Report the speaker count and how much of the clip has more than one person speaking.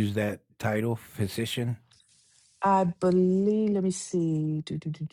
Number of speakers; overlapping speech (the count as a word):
two, no overlap